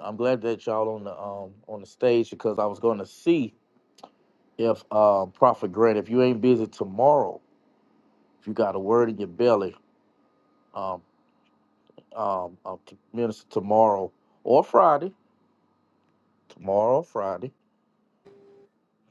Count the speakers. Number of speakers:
one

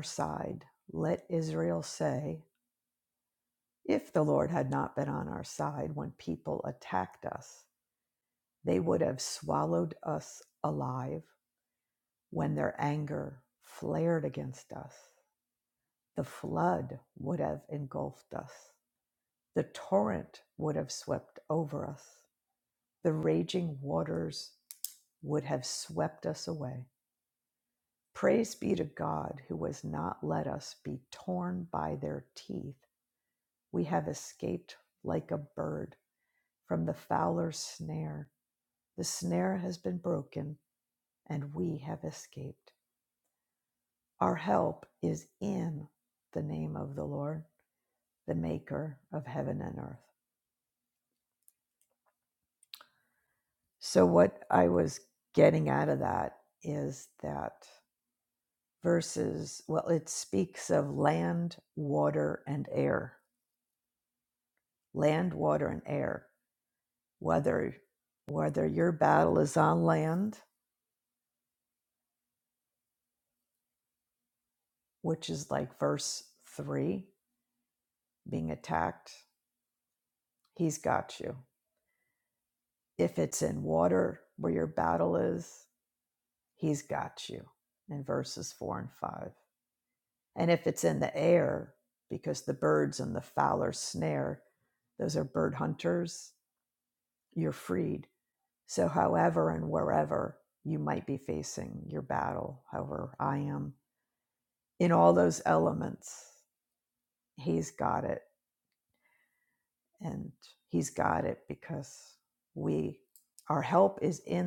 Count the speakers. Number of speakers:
one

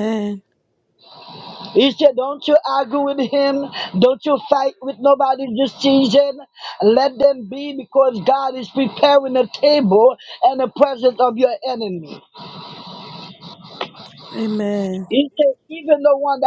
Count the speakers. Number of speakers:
two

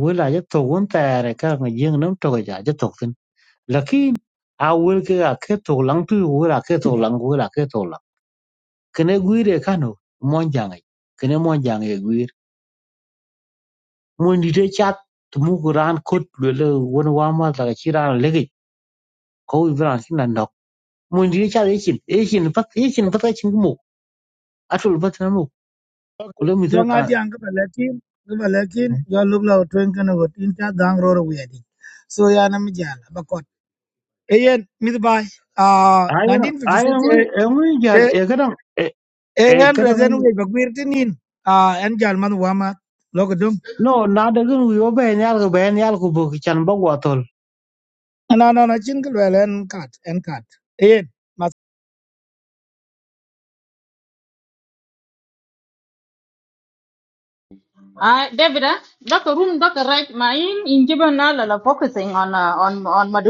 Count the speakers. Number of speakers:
three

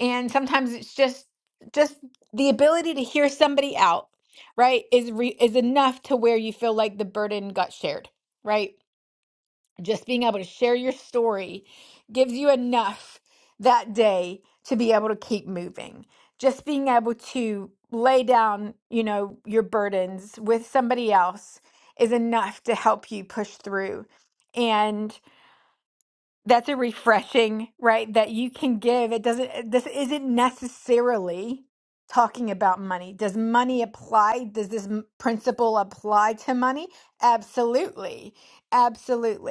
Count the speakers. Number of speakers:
one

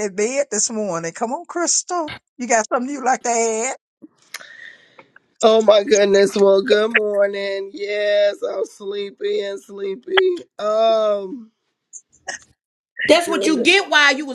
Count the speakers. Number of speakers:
three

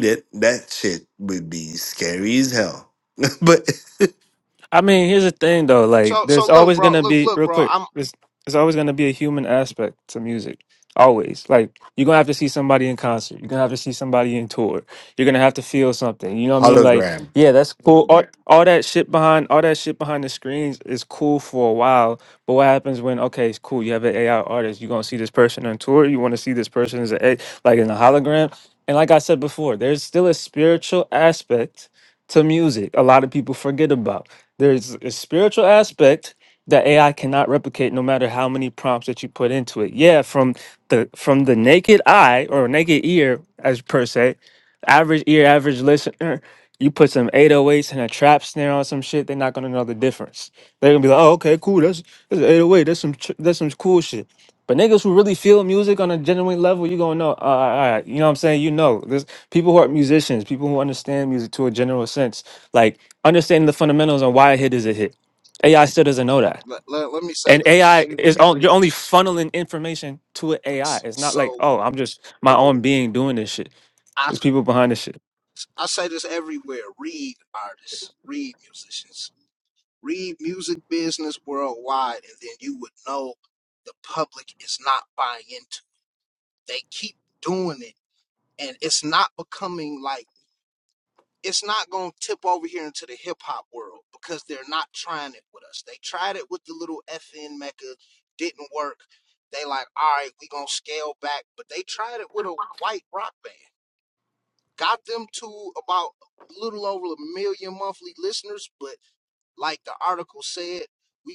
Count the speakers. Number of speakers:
three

